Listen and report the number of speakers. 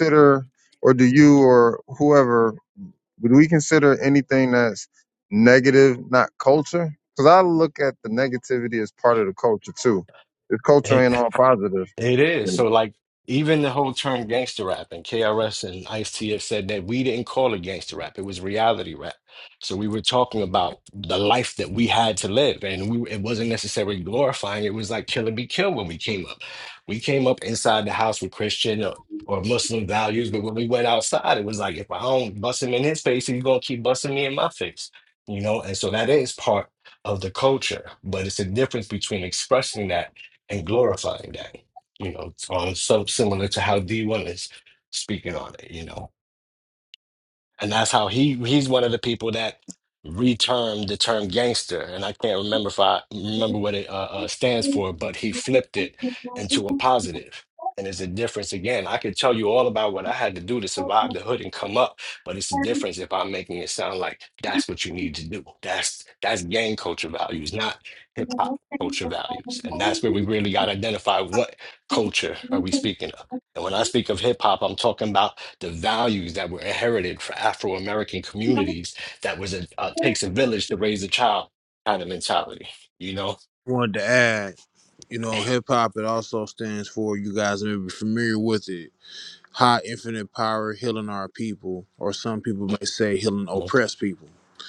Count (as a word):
three